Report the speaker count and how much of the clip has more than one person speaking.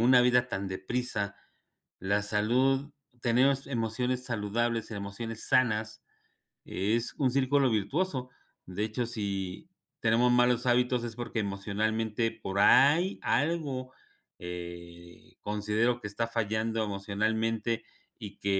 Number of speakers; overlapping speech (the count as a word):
one, no overlap